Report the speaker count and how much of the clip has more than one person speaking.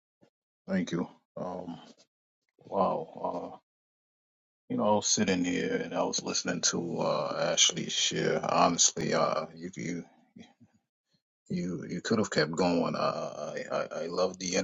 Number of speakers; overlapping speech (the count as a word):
one, no overlap